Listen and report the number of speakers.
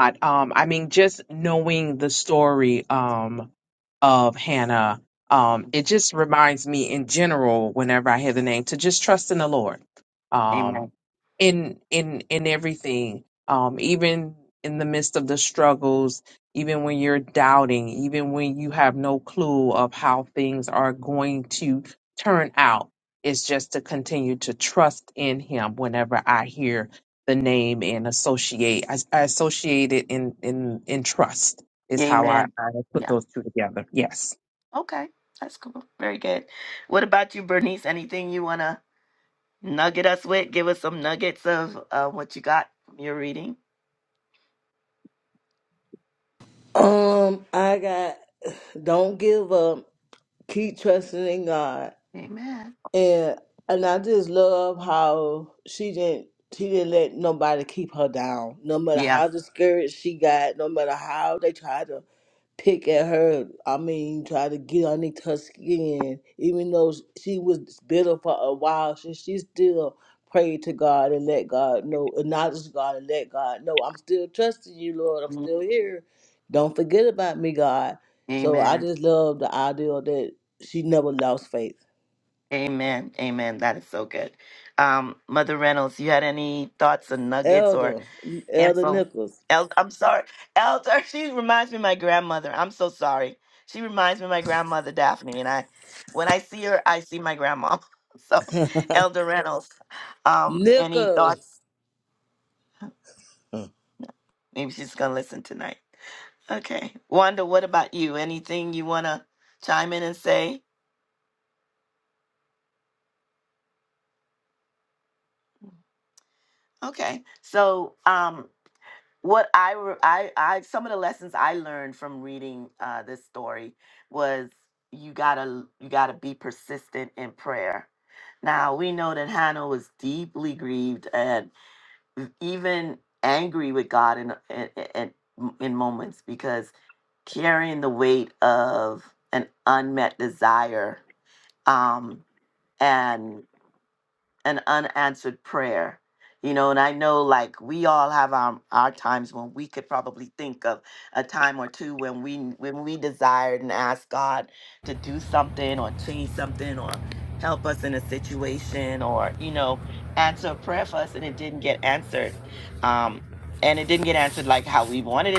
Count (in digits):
3